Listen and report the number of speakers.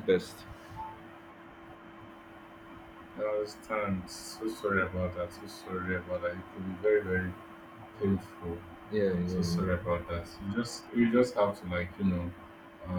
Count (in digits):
2